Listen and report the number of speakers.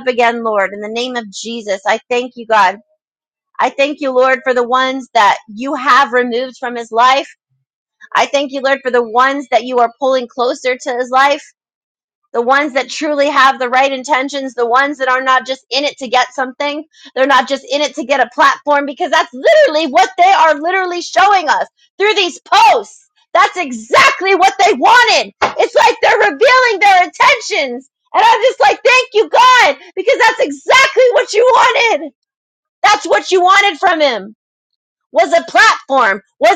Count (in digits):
1